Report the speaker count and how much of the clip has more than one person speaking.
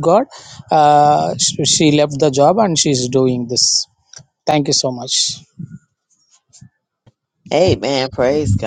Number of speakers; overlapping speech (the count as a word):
two, no overlap